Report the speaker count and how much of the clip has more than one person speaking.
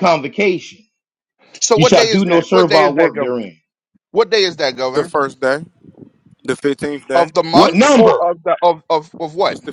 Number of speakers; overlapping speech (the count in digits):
3, about 27%